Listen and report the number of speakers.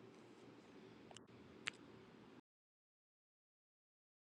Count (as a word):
zero